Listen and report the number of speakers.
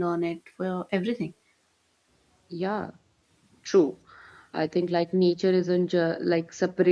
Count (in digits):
2